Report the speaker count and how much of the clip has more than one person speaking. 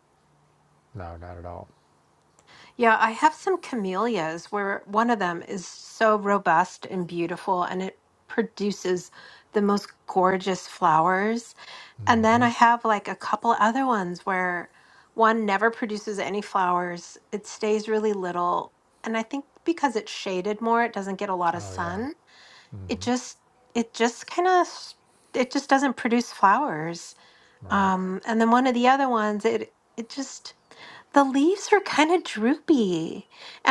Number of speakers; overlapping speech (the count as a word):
two, about 3%